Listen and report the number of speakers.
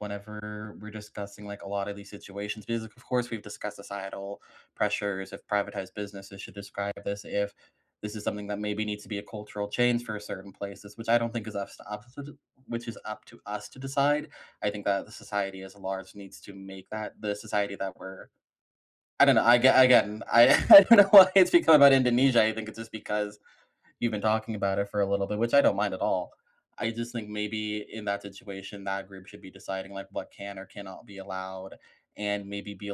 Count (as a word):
one